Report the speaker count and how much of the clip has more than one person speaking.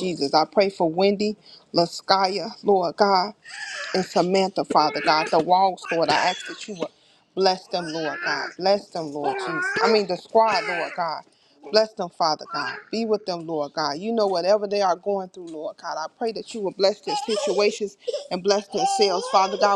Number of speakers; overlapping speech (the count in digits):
1, no overlap